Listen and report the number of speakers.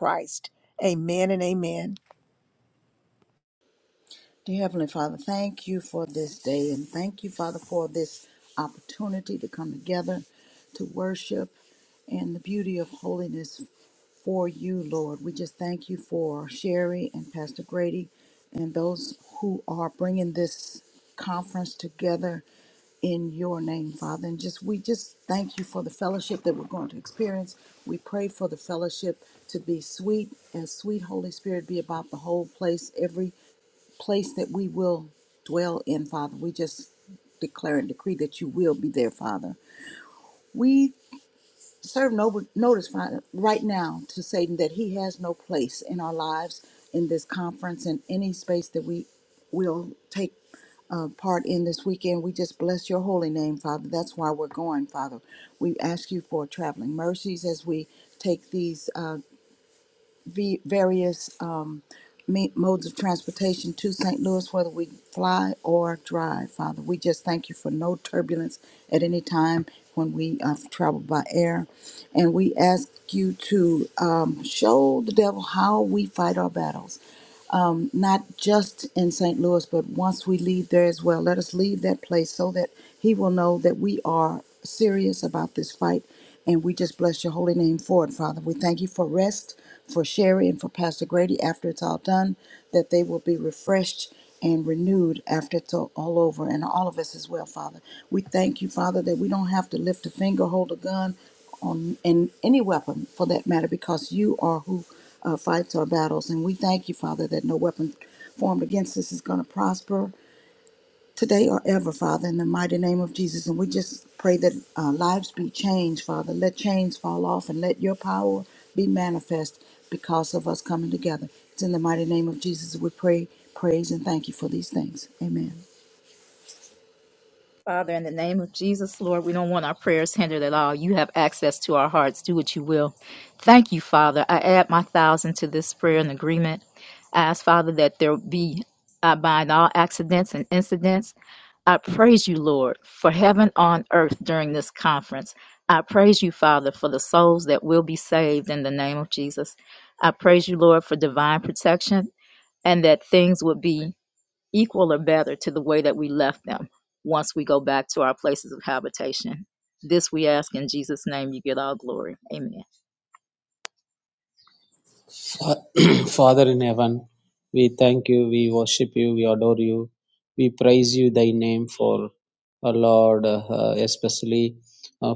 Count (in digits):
4